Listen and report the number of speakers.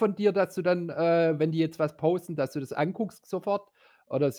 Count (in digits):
1